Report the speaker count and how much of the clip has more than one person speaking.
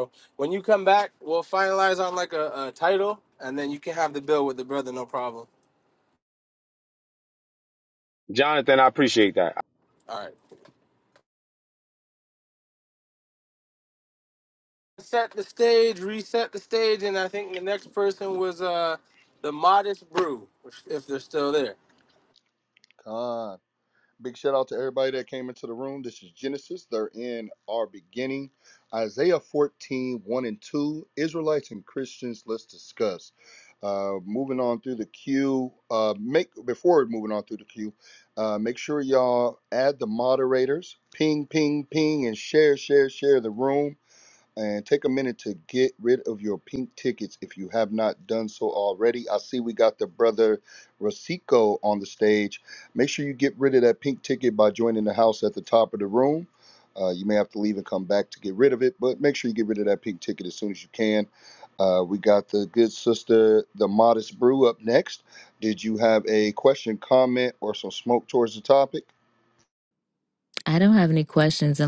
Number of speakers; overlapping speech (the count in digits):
4, no overlap